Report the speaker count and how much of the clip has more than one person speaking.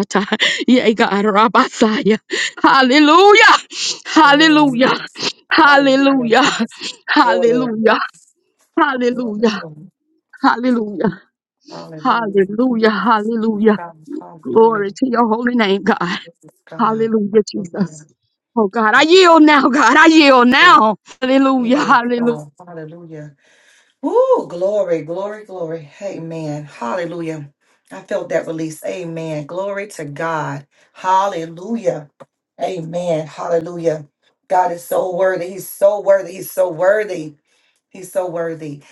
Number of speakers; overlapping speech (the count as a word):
two, about 11%